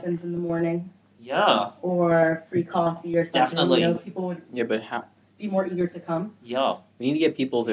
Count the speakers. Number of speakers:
three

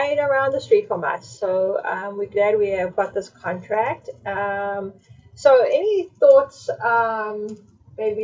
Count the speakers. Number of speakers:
one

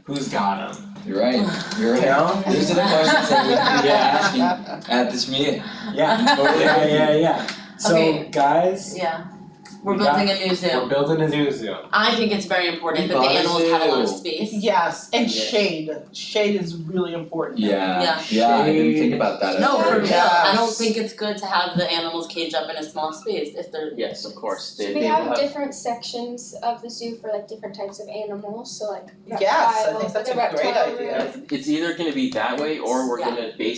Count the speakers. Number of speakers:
six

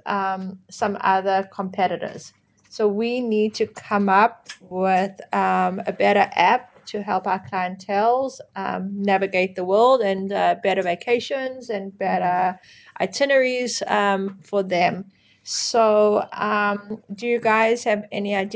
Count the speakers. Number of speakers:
one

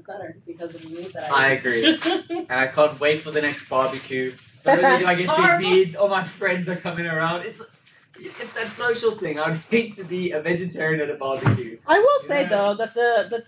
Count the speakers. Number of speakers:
three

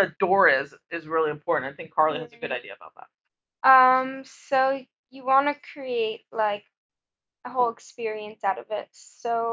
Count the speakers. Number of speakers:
two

